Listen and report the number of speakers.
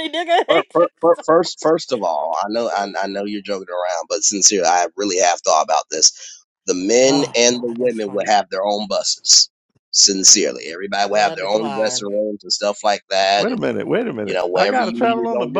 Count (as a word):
three